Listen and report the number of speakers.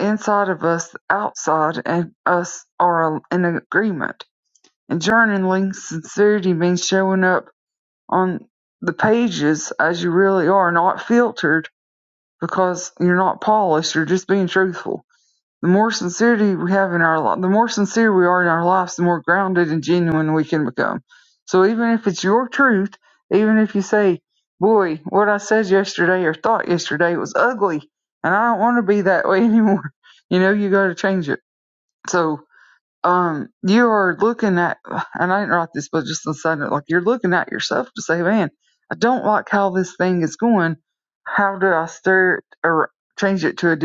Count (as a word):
one